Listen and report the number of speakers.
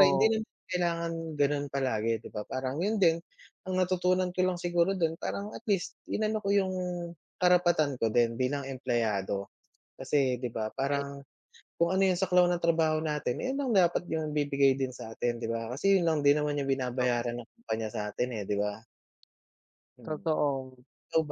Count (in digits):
2